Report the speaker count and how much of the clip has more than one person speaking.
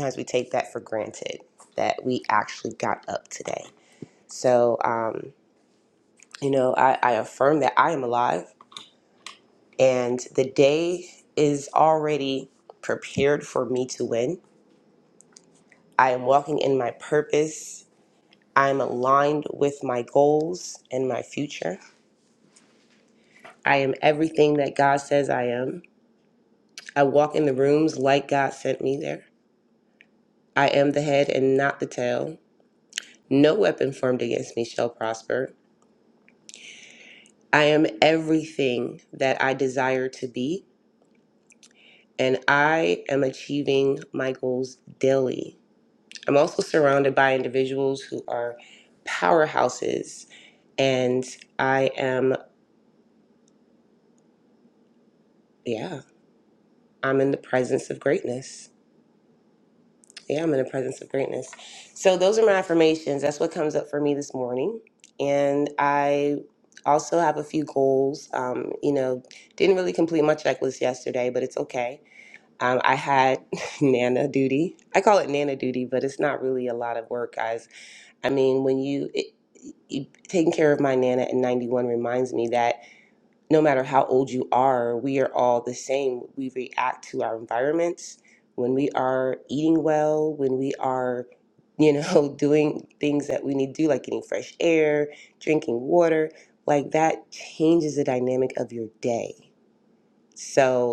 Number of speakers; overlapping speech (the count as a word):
one, no overlap